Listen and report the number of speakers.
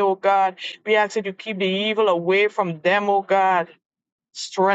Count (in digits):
1